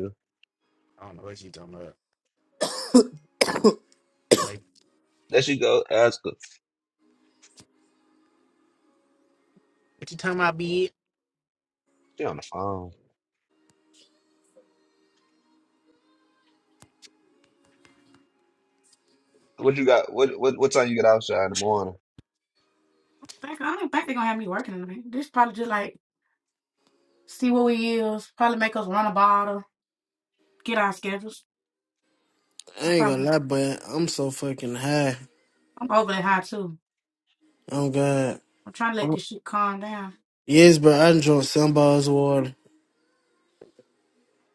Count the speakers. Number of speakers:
four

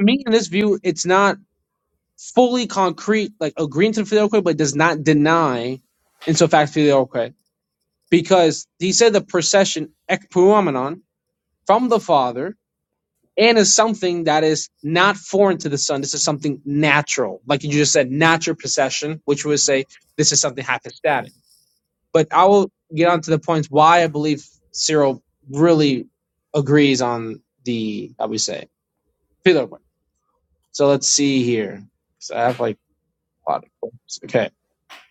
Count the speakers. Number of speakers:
one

